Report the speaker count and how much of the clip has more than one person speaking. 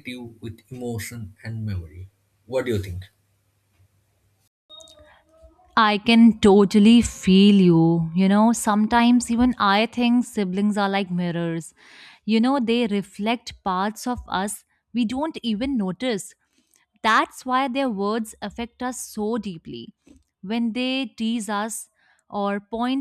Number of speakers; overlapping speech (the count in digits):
2, no overlap